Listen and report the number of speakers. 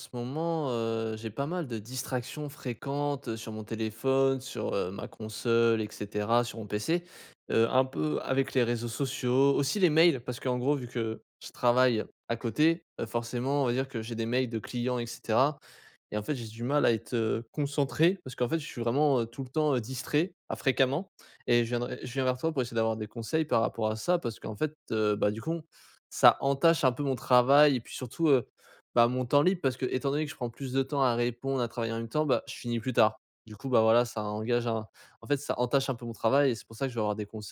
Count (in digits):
1